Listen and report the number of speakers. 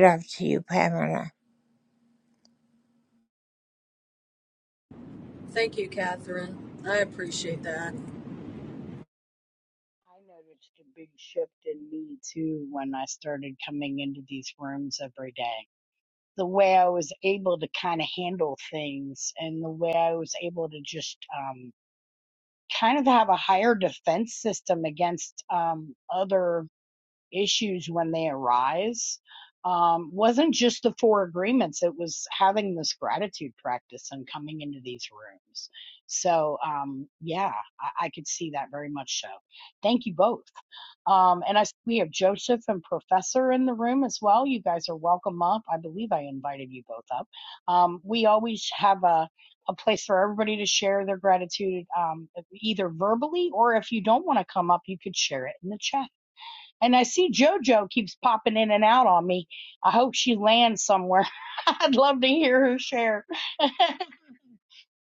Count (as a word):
three